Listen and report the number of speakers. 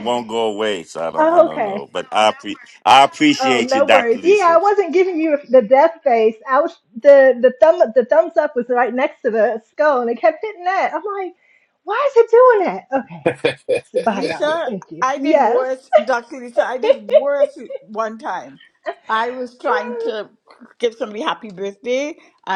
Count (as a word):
three